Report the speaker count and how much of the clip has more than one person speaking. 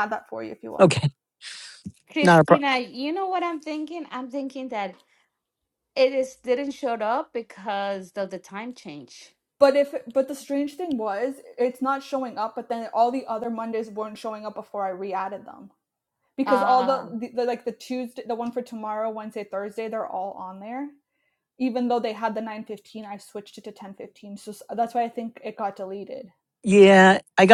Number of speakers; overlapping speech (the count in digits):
3, about 4%